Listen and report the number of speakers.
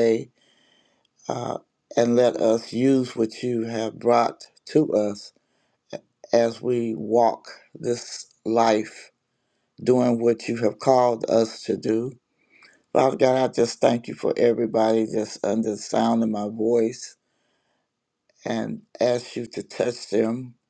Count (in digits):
1